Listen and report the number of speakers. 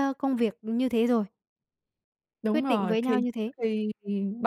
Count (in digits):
2